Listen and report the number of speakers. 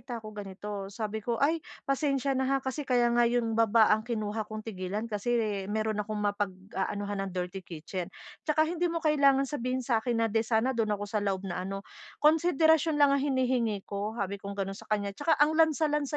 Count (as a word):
one